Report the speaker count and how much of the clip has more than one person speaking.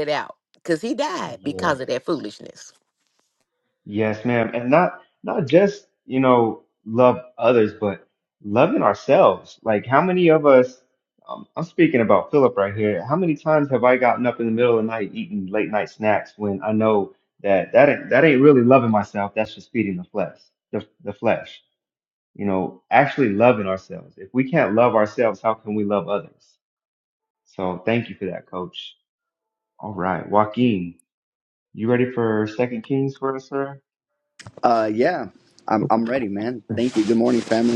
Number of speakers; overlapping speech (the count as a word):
three, about 1%